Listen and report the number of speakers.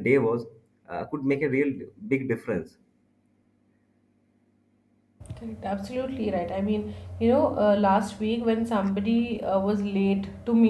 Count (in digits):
2